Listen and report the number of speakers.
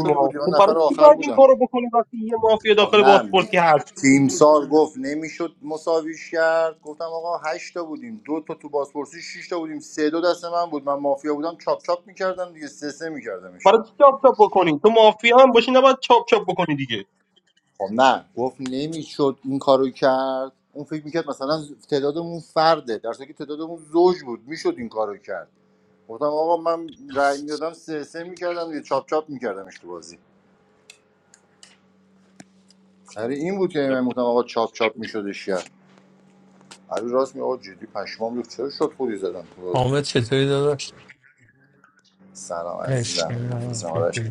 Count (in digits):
3